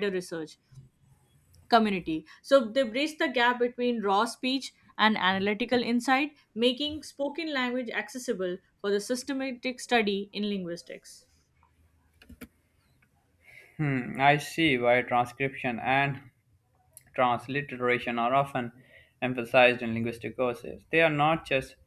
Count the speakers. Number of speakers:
two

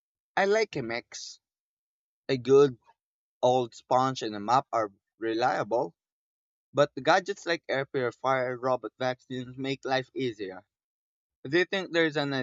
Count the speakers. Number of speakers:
one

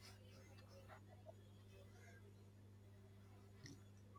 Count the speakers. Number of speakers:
zero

